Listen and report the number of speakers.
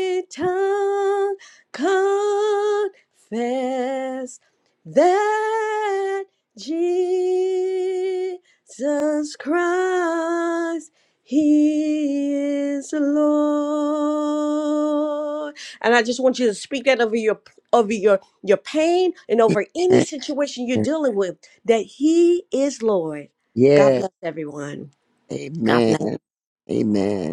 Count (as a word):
two